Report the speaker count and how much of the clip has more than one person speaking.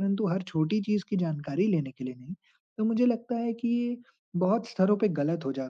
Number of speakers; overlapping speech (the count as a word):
one, no overlap